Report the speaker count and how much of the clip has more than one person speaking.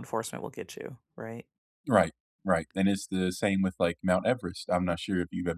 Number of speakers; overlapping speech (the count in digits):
2, no overlap